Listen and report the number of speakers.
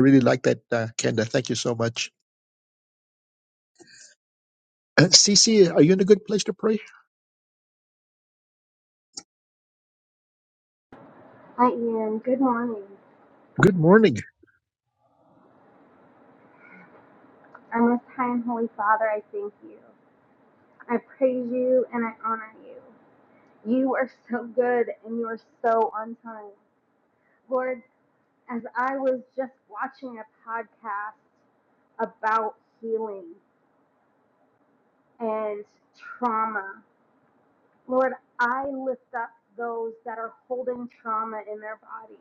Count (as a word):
two